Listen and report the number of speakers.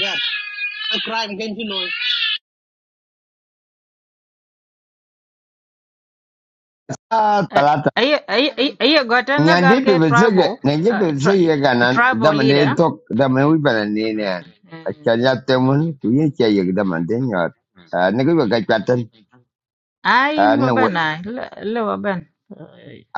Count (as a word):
three